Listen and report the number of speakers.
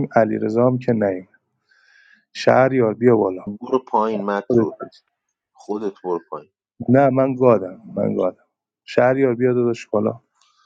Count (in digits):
2